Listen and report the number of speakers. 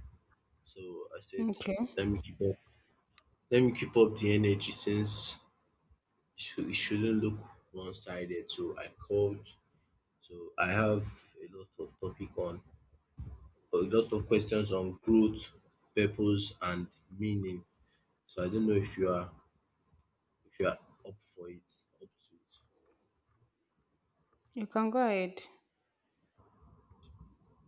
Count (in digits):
2